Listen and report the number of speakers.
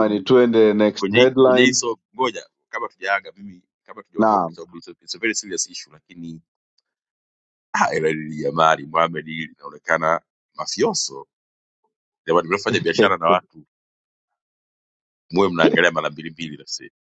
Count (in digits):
2